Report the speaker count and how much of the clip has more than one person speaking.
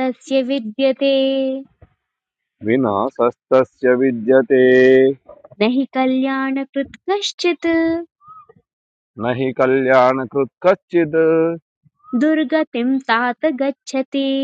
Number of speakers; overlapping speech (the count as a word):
two, no overlap